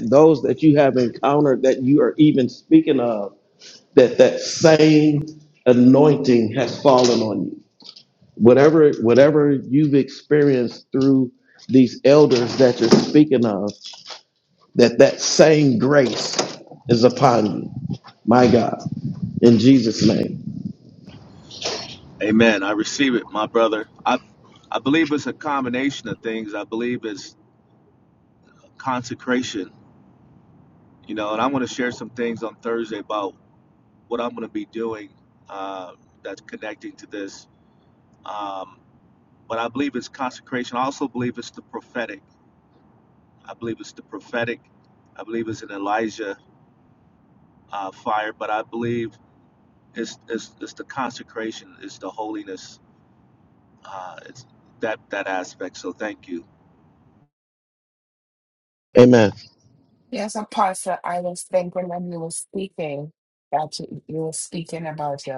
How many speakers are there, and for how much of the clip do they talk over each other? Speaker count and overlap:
three, no overlap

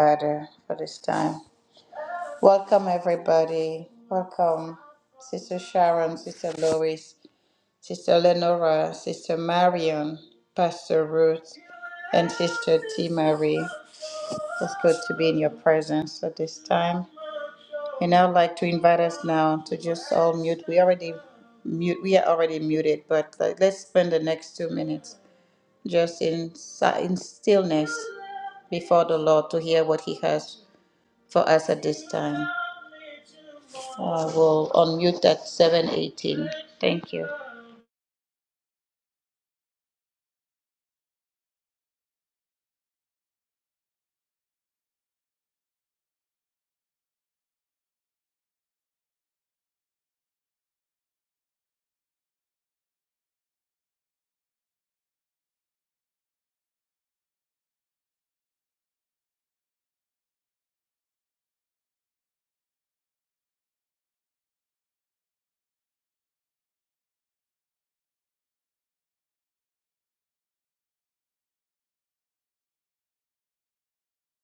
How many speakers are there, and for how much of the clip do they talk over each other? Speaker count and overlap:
one, no overlap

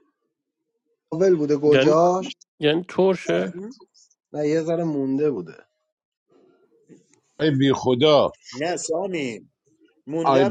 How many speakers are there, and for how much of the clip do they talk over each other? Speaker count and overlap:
four, about 5%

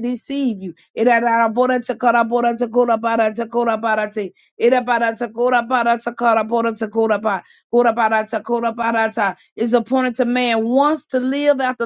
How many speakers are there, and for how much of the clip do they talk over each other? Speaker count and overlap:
one, no overlap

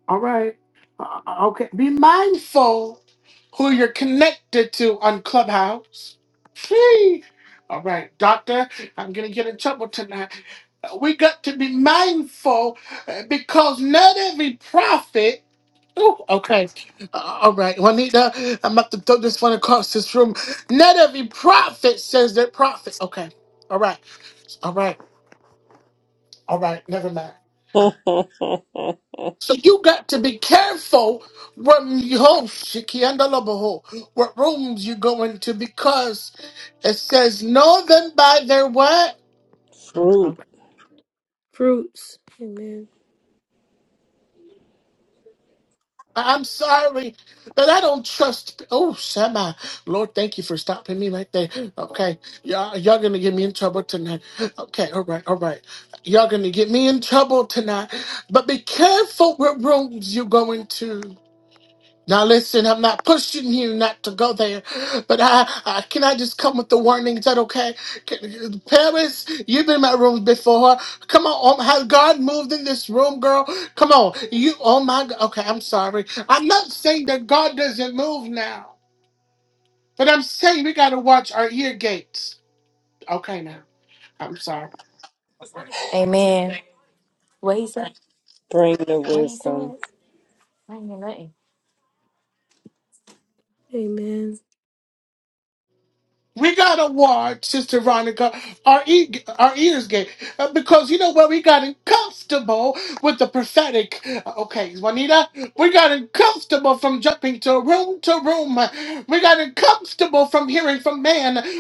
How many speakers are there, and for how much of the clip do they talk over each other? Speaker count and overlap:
four, about 1%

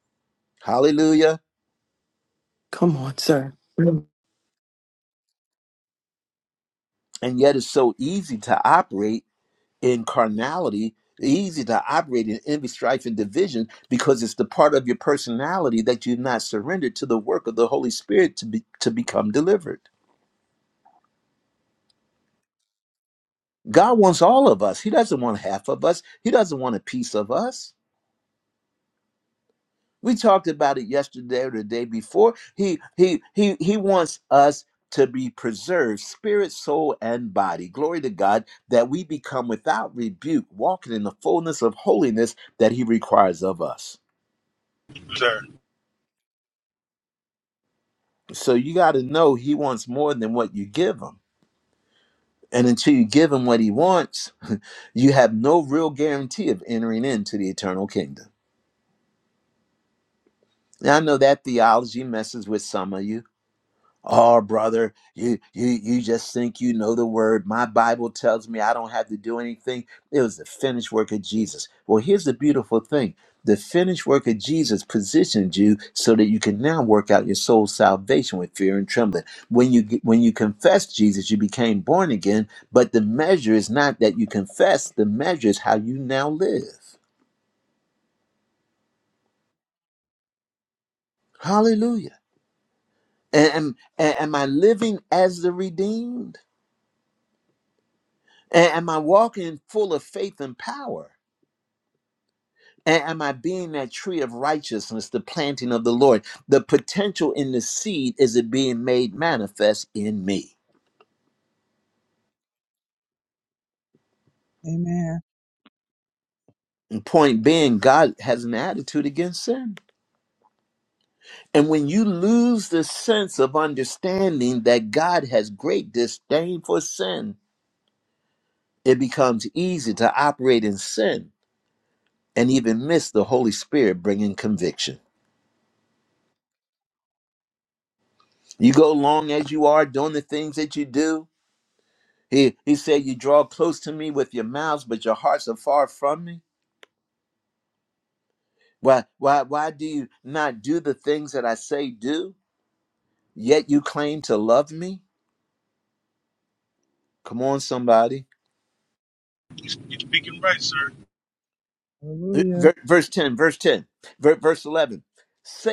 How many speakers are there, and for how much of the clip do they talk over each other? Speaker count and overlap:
four, under 1%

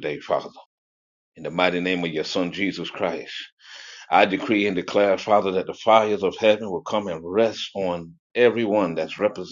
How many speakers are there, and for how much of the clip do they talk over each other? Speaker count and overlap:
one, no overlap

